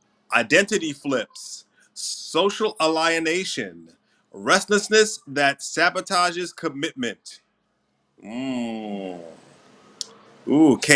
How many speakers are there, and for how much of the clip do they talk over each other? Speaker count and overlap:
one, no overlap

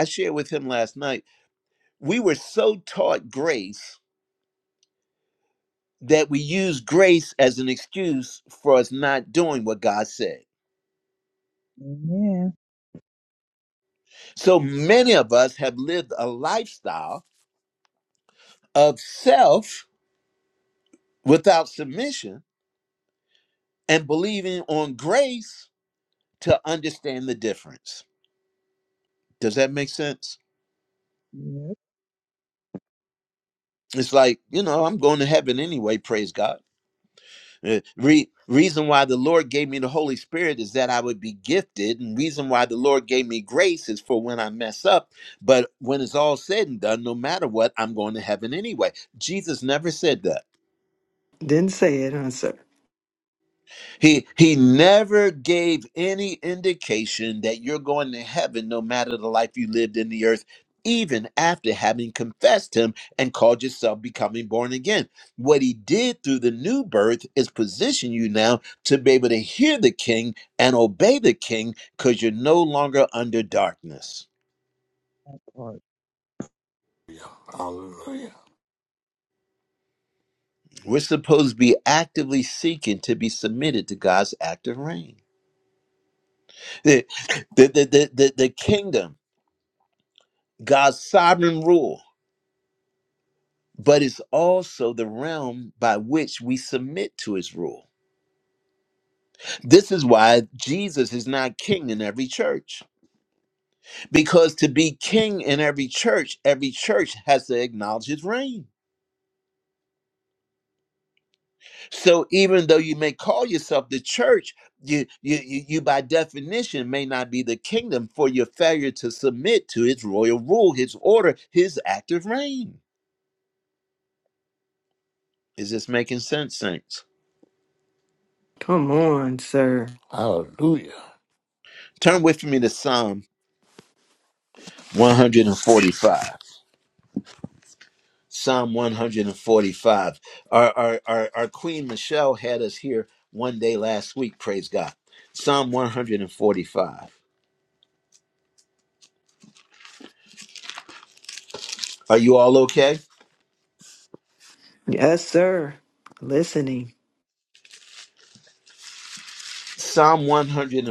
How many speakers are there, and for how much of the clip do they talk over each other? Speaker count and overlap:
four, no overlap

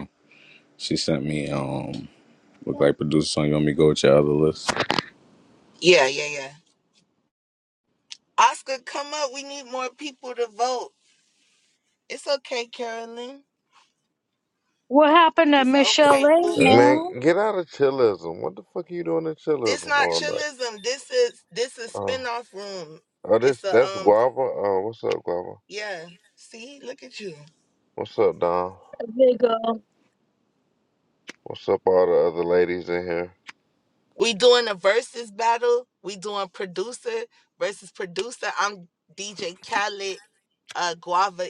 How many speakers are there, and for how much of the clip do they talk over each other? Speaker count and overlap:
four, about 8%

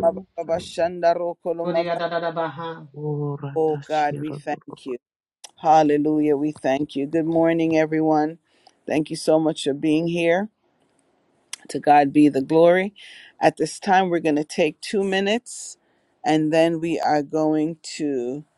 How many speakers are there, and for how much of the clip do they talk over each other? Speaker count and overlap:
three, about 7%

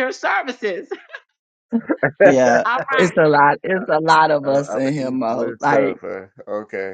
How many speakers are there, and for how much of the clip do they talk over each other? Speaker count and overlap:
three, about 31%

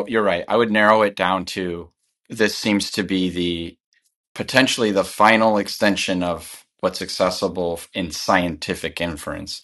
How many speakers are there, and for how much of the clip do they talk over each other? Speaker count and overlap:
one, no overlap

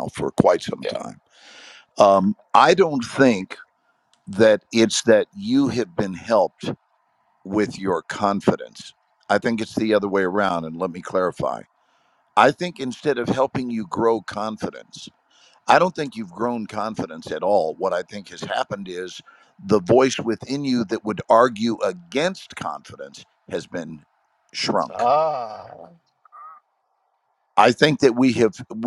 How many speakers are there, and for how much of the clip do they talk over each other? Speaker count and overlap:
two, about 1%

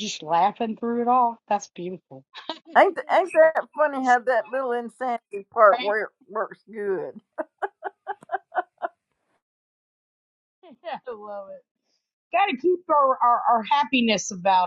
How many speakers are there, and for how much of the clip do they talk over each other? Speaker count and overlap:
two, about 1%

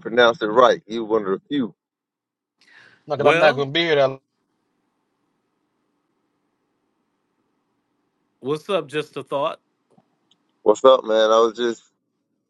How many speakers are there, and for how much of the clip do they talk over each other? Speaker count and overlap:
three, about 4%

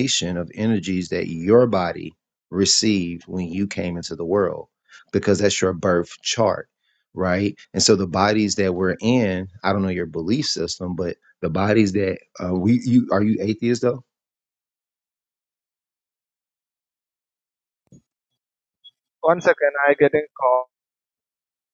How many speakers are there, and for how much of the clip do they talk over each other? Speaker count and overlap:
two, no overlap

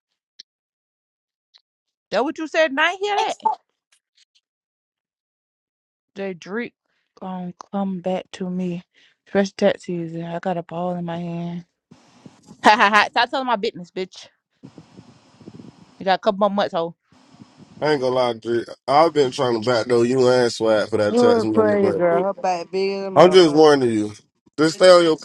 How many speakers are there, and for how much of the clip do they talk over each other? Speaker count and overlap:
three, about 5%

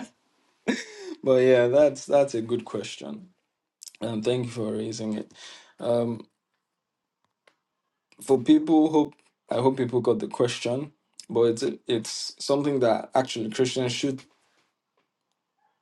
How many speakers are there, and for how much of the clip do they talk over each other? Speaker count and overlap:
one, no overlap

